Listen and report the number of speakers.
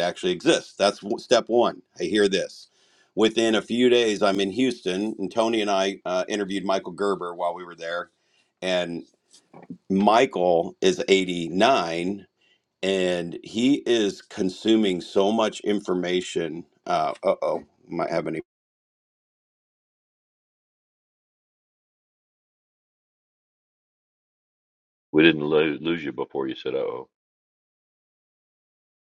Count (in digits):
2